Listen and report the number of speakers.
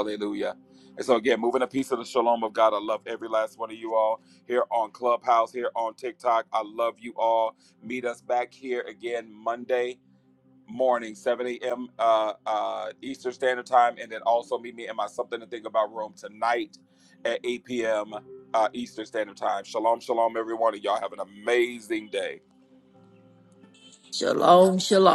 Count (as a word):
two